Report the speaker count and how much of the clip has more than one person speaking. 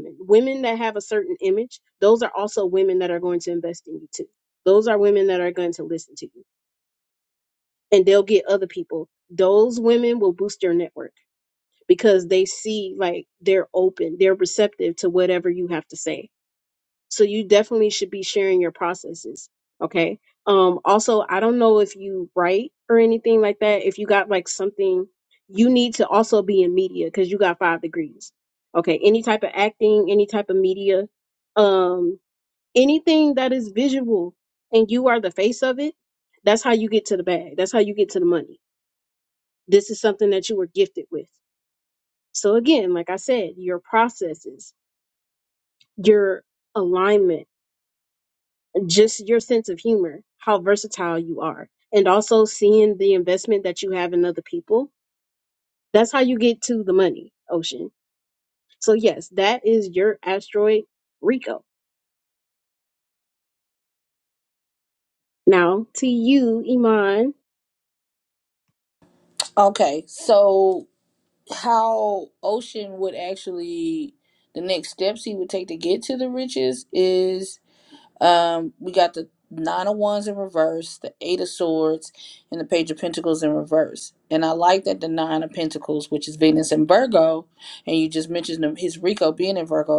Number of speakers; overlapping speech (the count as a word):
two, no overlap